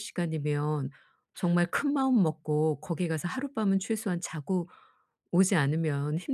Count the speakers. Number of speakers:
1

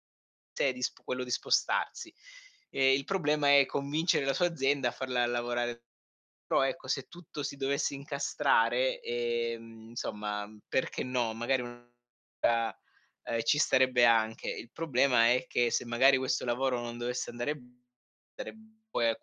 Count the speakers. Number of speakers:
1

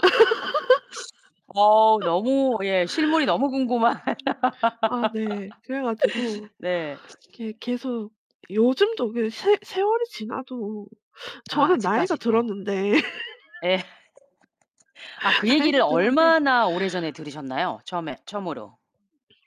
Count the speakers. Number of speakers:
2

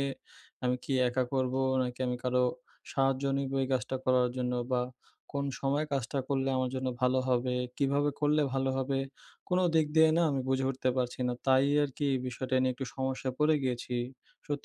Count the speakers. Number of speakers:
1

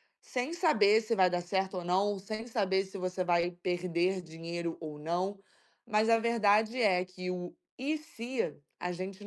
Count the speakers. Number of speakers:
1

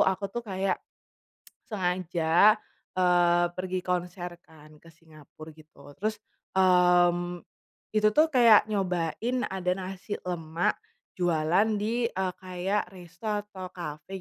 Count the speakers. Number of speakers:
1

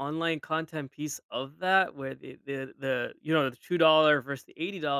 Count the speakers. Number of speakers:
1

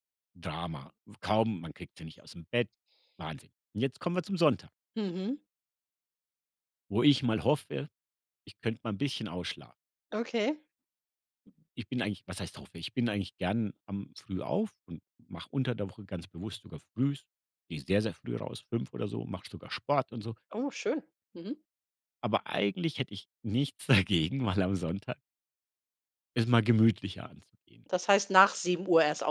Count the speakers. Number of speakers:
2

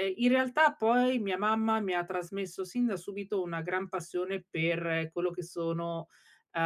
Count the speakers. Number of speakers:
1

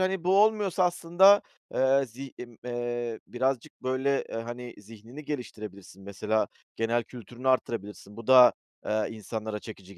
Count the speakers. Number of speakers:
1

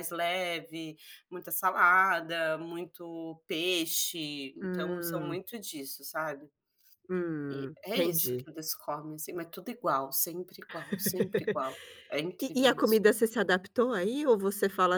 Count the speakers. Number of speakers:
2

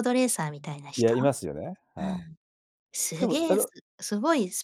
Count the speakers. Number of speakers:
2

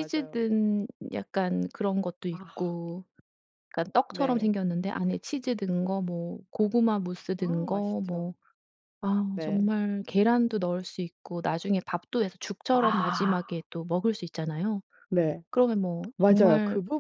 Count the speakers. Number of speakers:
2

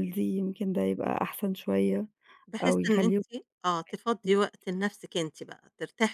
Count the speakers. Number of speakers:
2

